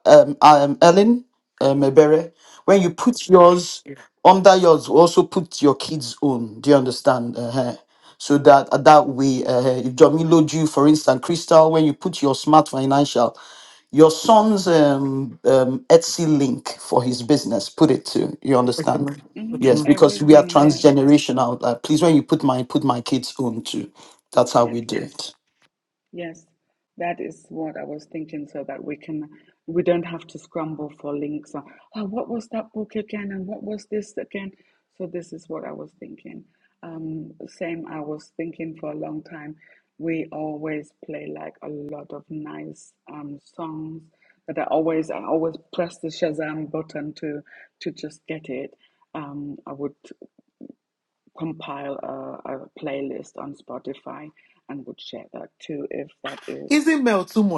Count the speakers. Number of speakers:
3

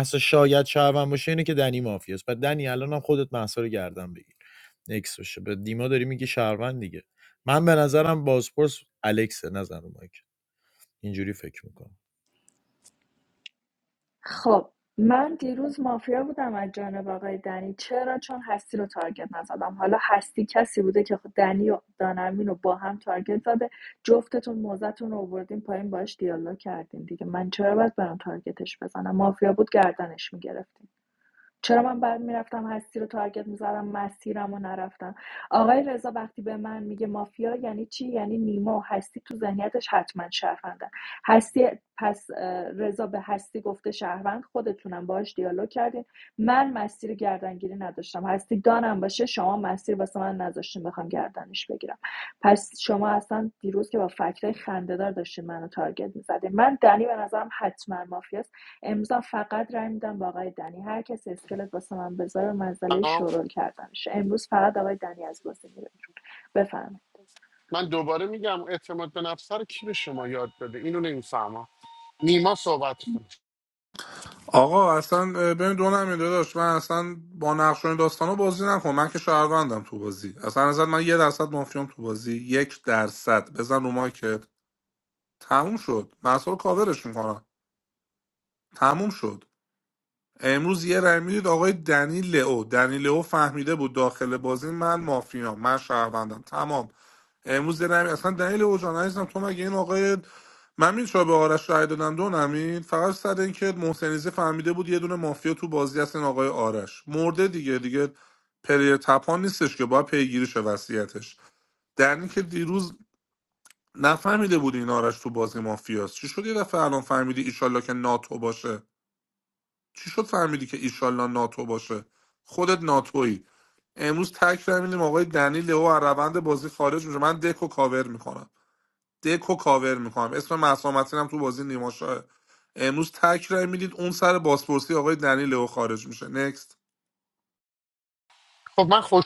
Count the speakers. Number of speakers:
4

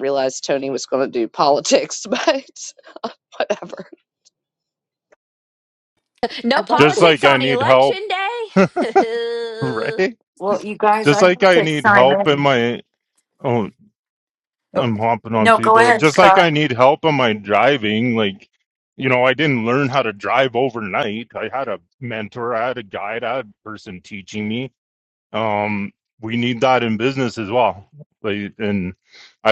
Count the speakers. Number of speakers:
4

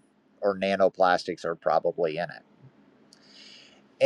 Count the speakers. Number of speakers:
1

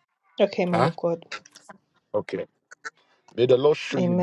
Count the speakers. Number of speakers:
2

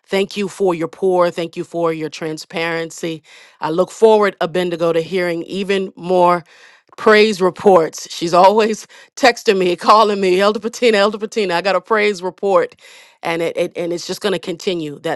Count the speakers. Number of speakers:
1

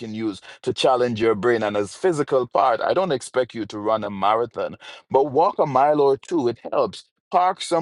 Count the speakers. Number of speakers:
1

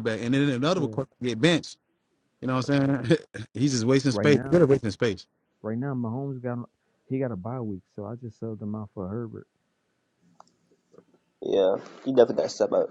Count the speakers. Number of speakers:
3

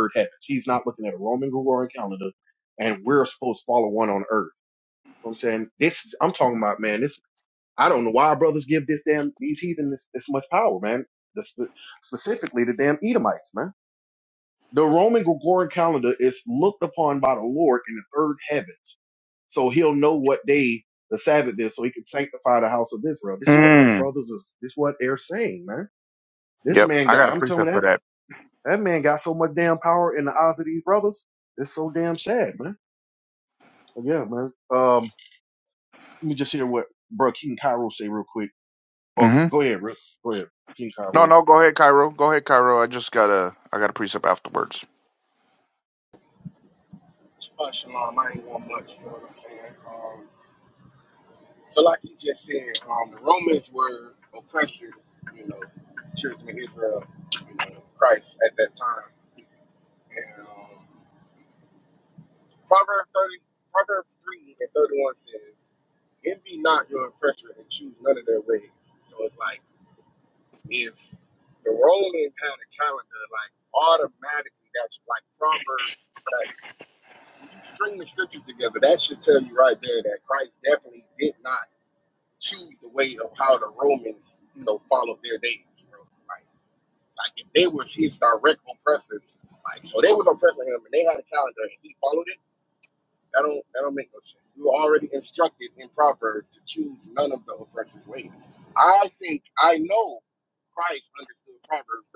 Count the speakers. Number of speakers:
3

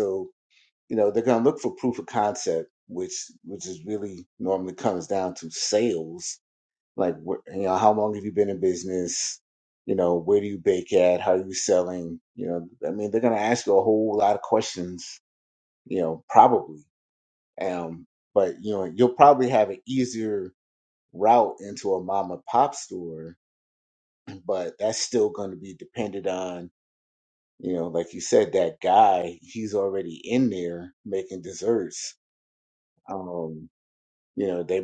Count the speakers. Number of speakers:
1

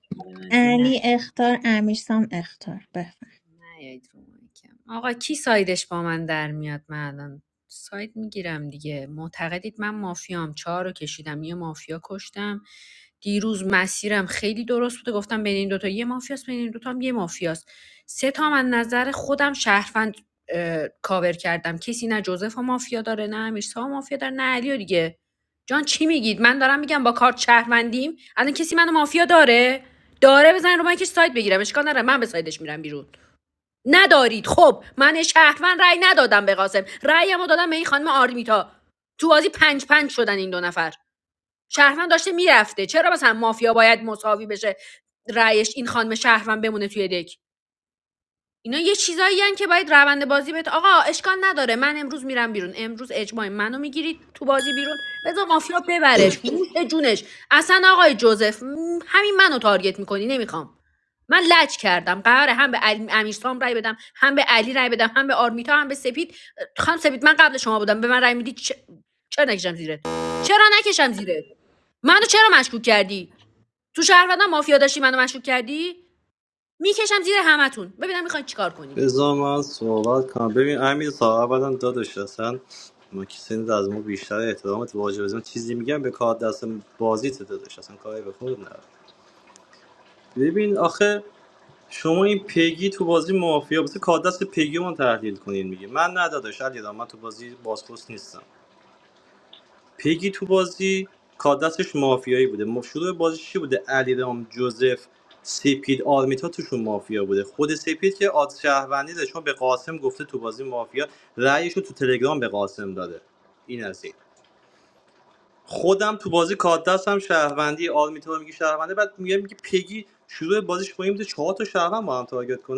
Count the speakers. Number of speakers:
3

